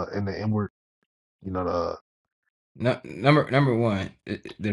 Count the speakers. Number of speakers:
2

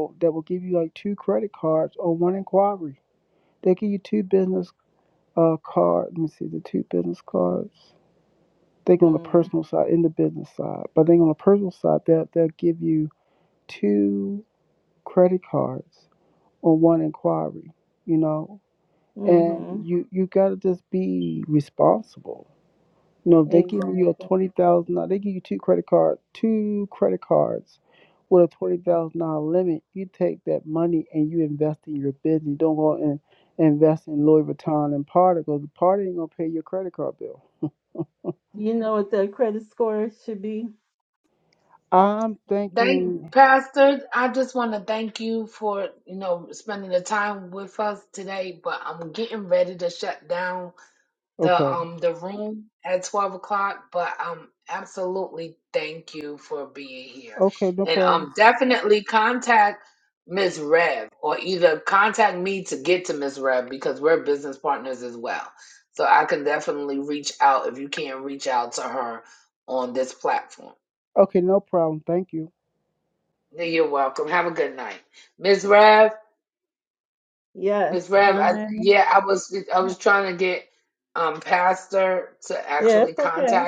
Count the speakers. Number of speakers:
3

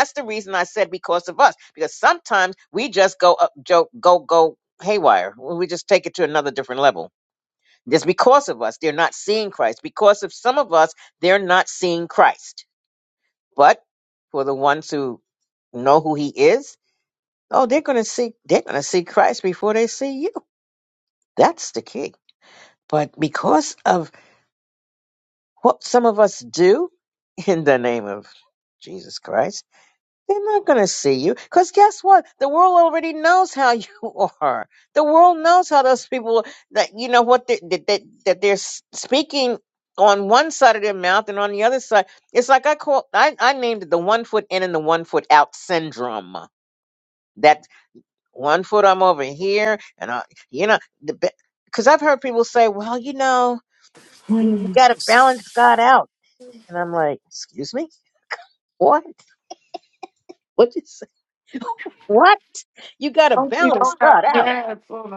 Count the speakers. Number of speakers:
2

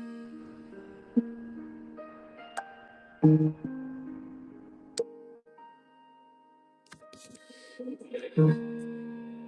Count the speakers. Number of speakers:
0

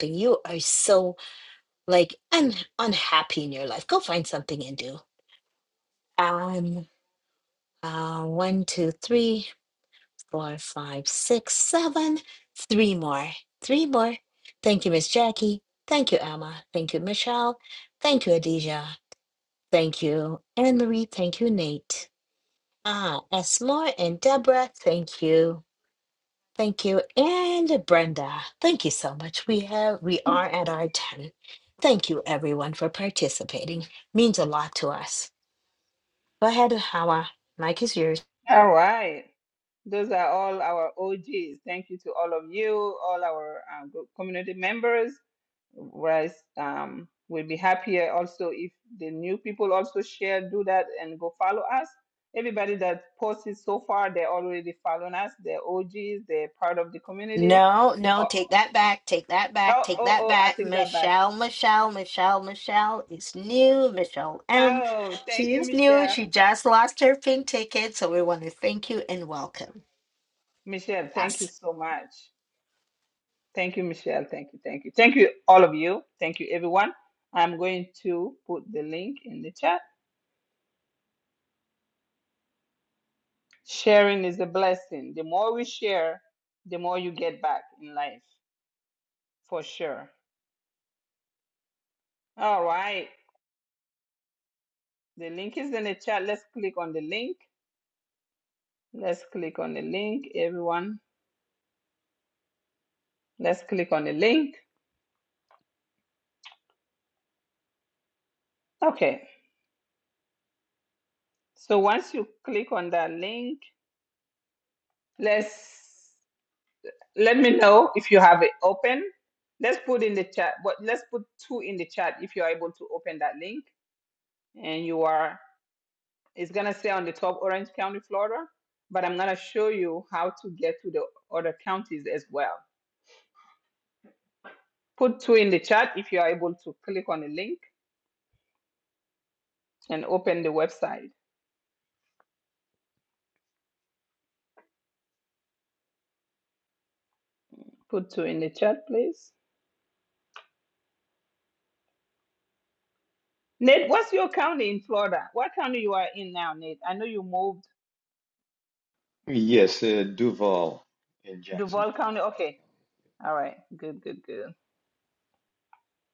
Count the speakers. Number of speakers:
3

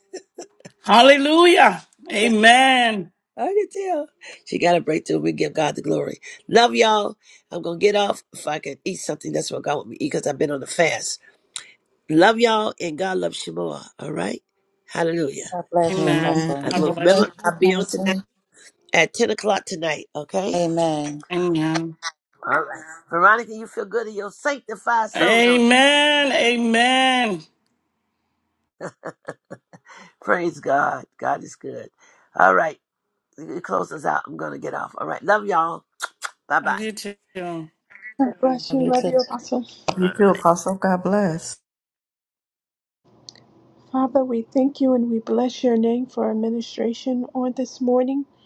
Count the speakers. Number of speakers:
5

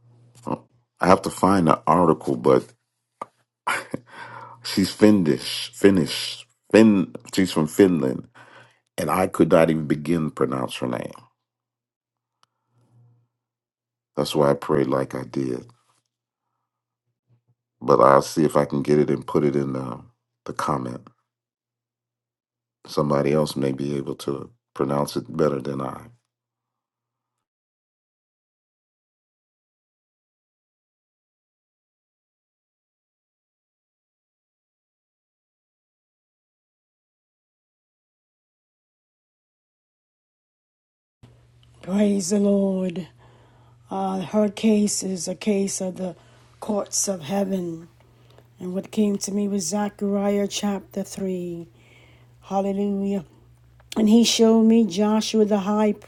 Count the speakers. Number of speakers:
2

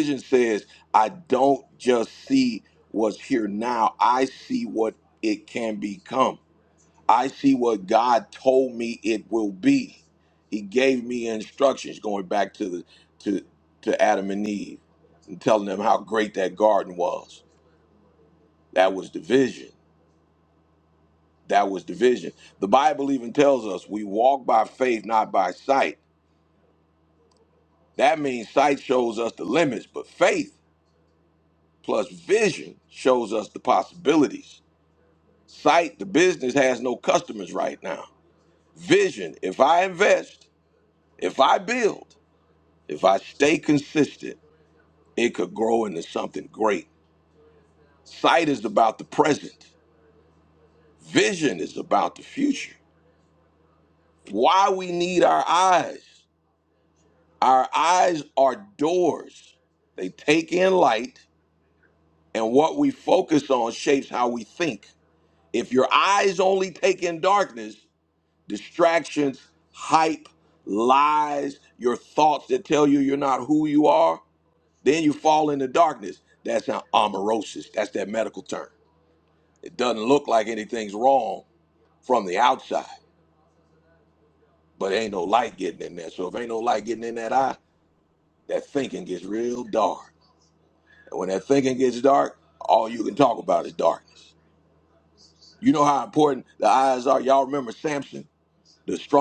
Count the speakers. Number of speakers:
1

